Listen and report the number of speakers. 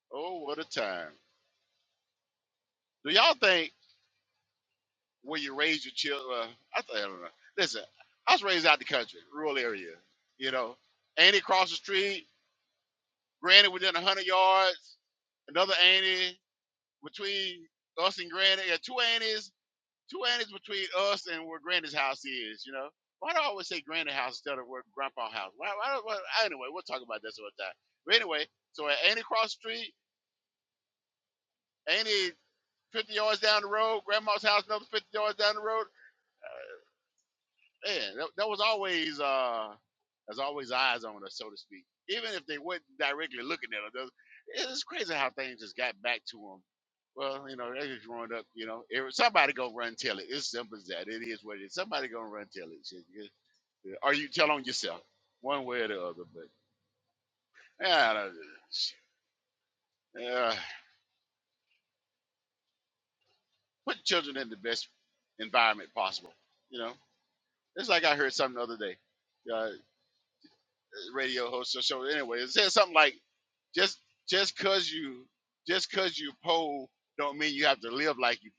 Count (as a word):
one